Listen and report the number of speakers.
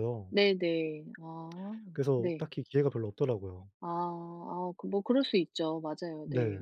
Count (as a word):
two